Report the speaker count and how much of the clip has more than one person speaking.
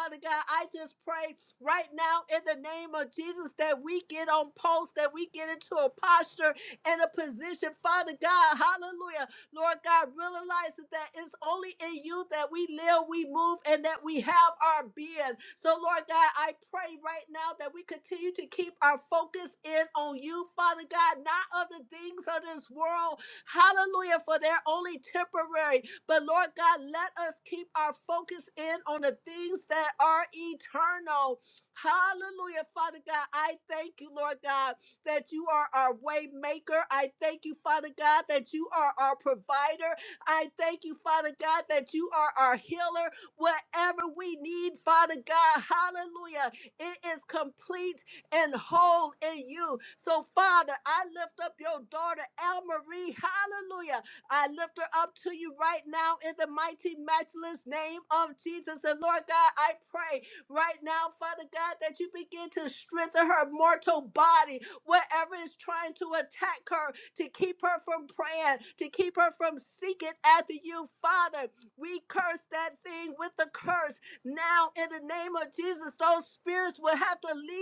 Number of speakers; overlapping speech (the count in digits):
1, no overlap